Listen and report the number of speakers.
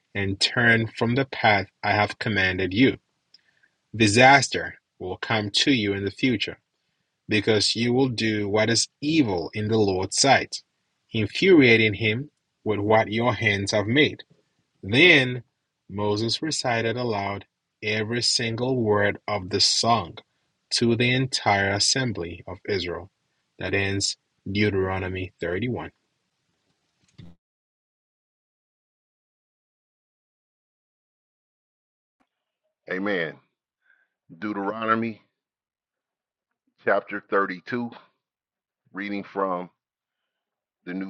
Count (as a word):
two